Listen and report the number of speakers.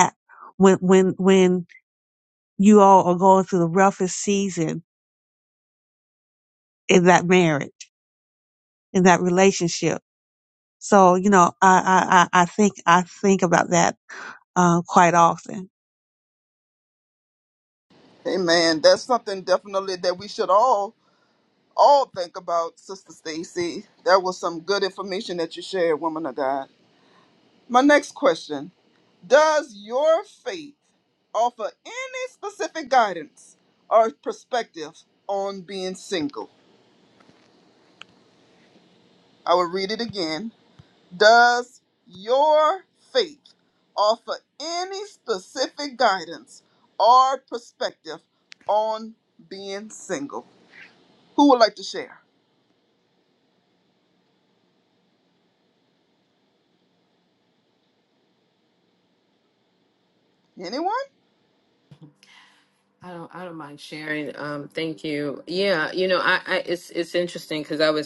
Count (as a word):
three